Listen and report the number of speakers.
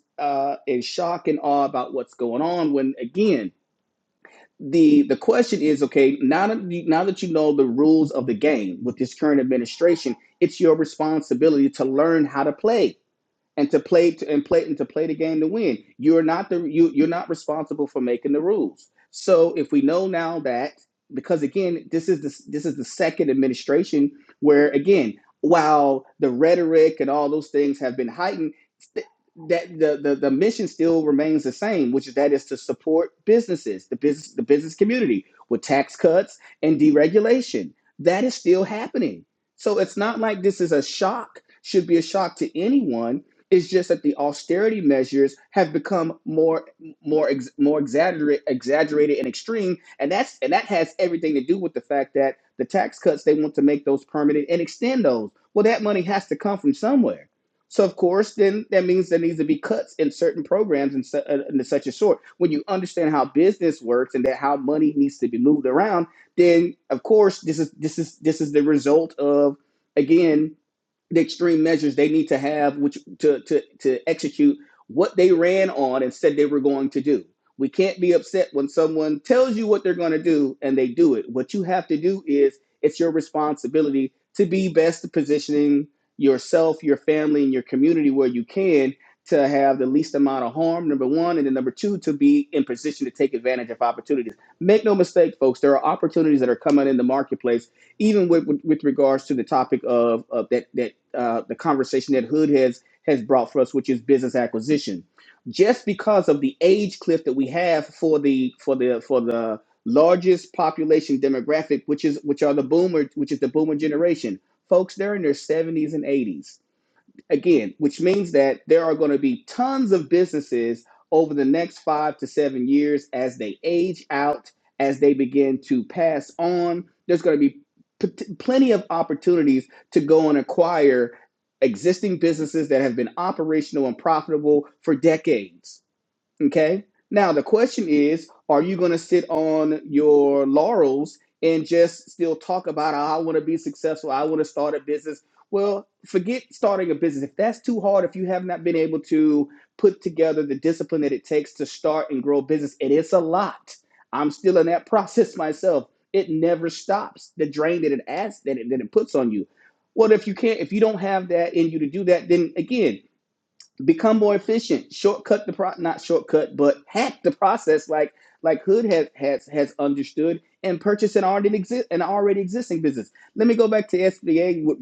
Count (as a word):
one